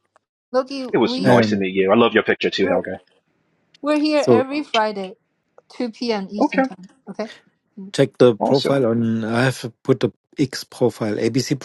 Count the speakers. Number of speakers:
three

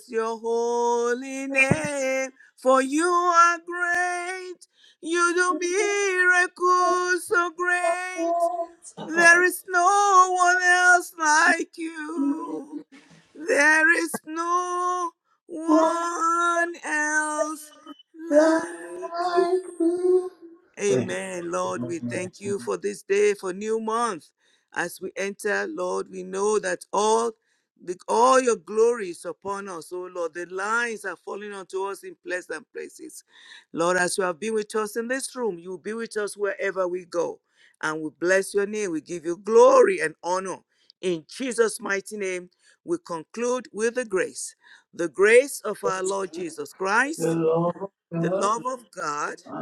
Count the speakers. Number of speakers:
two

